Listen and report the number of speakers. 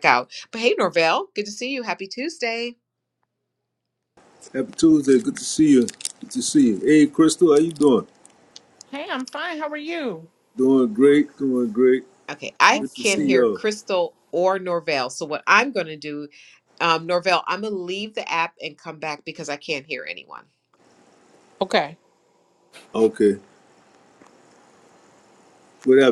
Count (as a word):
three